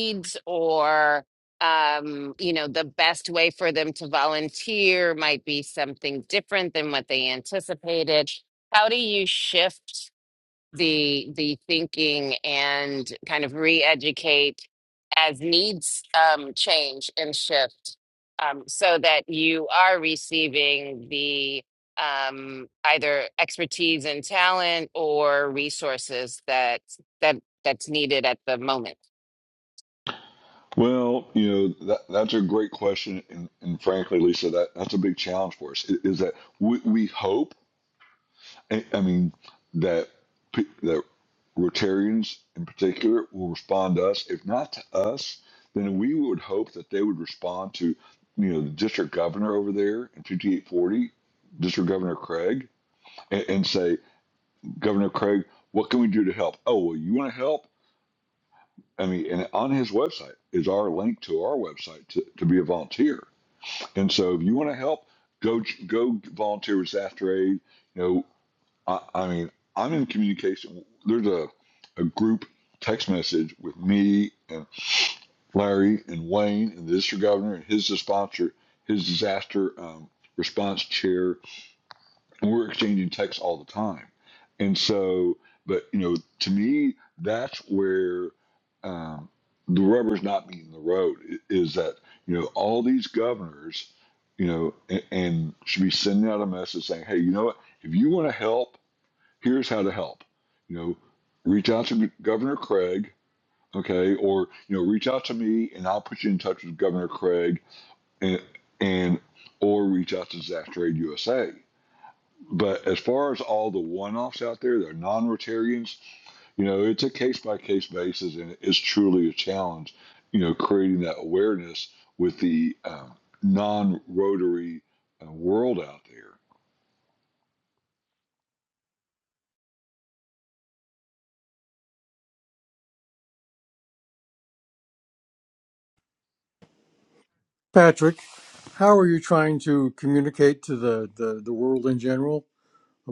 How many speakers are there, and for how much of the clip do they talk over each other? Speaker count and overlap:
three, no overlap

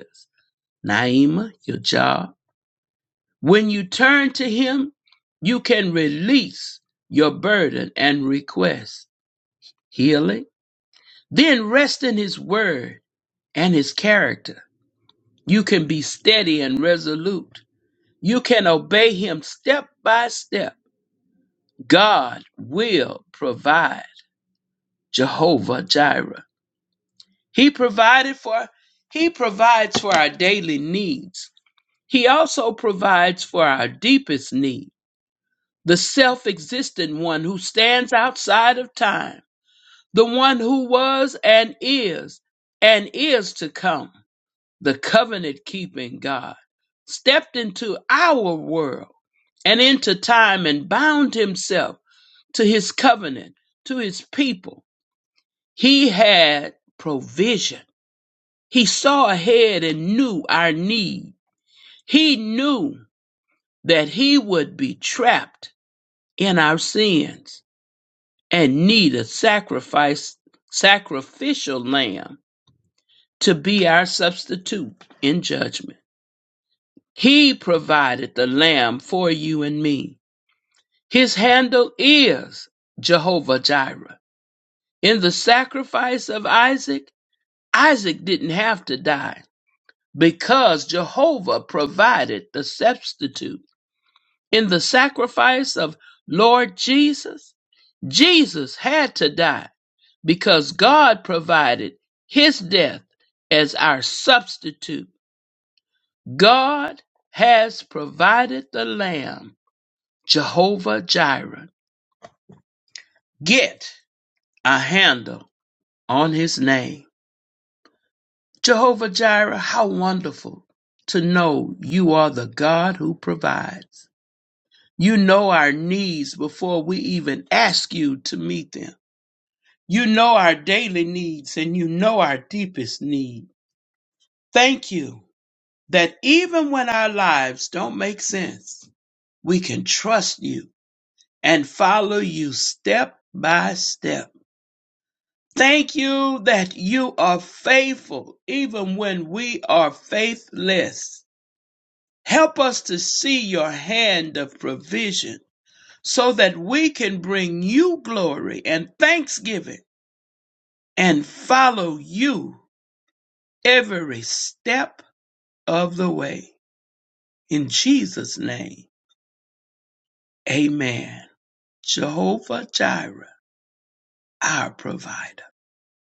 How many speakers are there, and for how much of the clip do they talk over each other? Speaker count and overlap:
one, no overlap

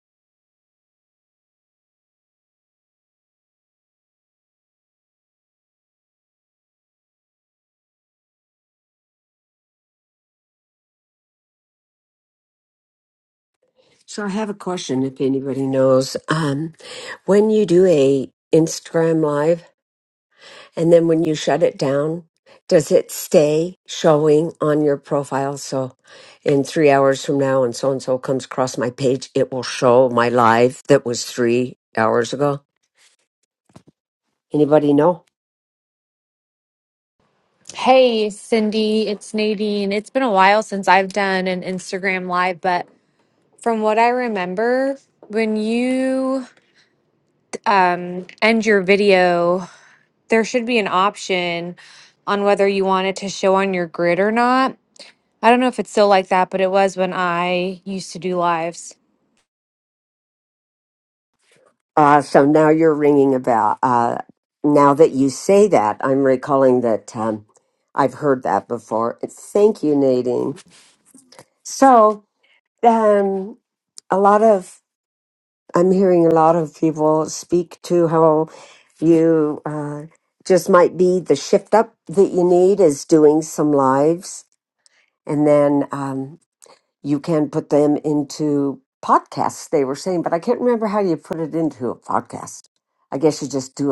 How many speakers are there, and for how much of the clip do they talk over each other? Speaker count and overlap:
two, no overlap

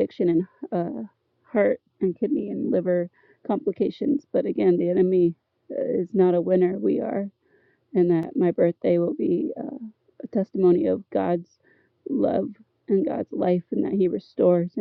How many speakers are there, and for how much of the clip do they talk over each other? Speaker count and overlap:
one, no overlap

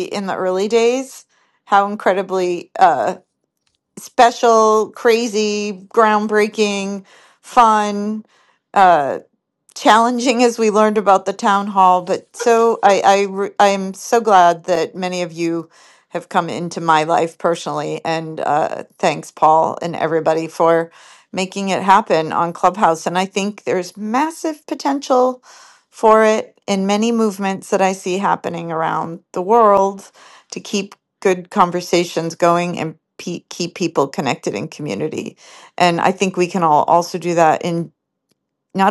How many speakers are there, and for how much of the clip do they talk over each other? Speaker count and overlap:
one, no overlap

